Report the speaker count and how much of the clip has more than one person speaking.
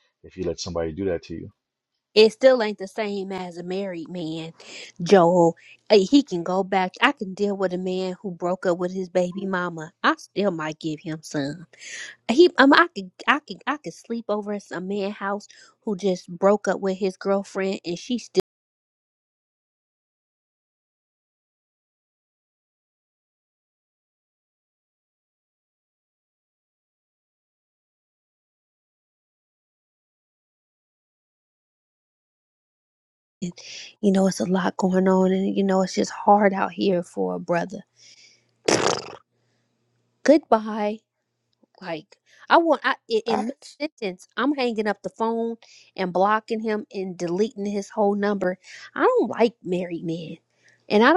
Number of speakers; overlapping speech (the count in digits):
2, no overlap